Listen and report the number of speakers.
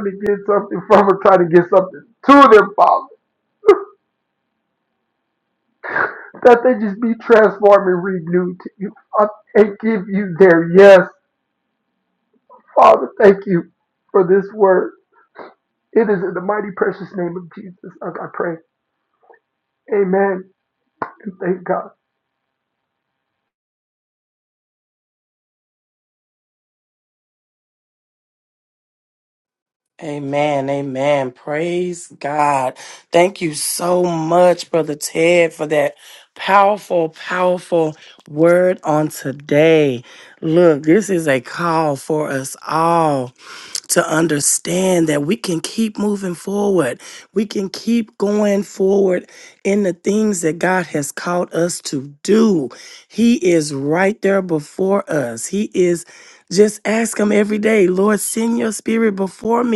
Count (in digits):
2